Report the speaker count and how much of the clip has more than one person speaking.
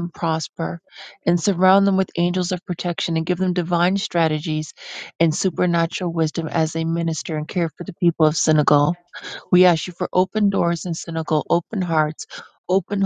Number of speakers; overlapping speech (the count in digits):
1, no overlap